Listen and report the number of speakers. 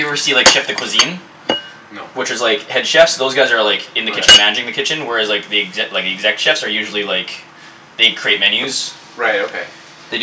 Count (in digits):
2